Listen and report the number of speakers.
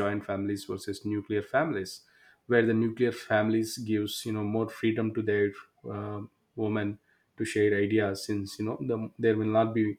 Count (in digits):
1